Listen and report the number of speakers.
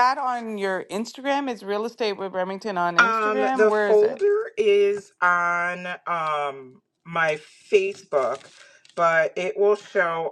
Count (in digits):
2